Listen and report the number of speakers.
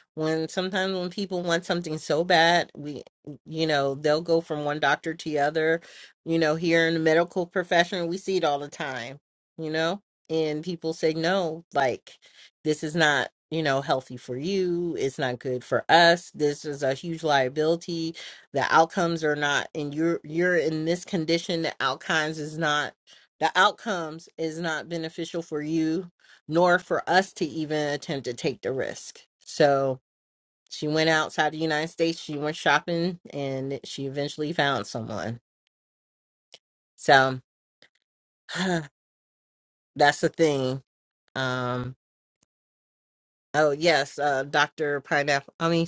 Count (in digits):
1